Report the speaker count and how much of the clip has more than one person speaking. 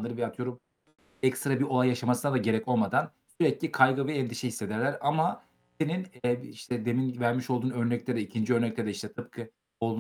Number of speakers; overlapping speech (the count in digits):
1, no overlap